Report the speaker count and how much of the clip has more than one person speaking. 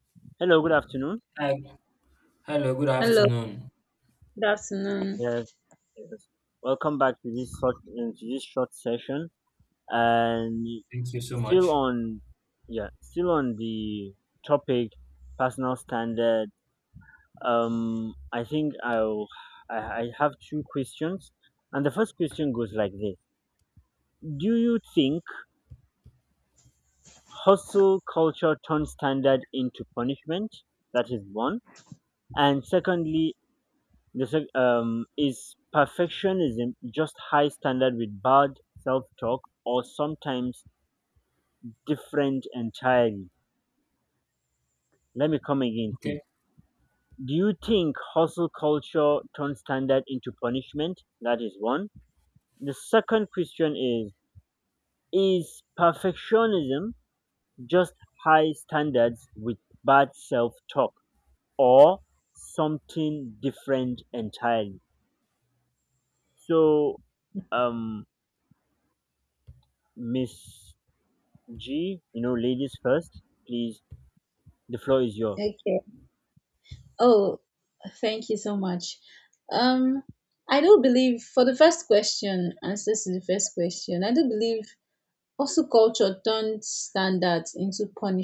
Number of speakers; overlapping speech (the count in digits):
3, about 1%